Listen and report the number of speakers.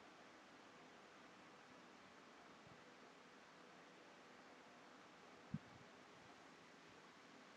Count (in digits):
0